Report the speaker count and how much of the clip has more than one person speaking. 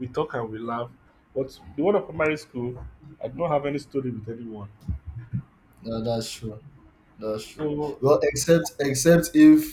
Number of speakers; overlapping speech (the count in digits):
2, about 1%